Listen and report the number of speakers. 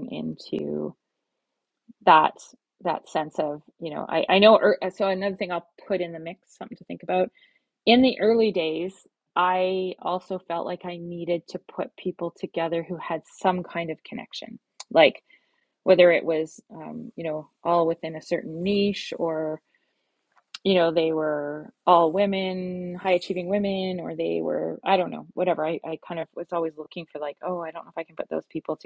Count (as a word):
one